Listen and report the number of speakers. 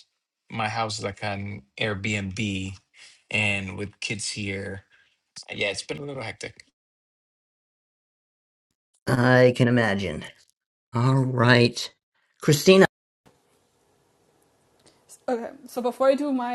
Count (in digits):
3